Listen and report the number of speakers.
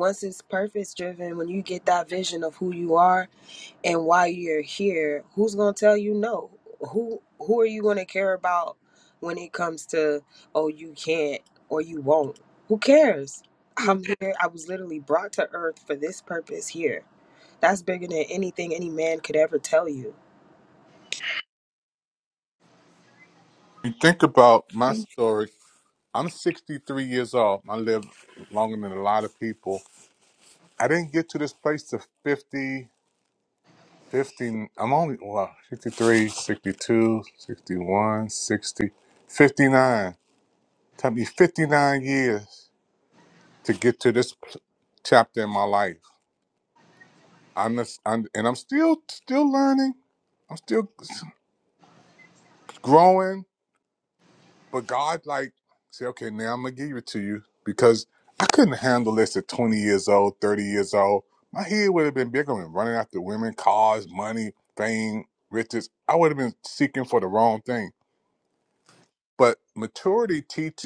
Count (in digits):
2